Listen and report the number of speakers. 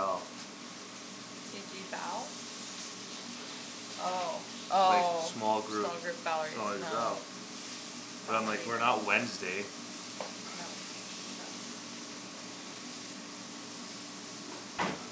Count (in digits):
2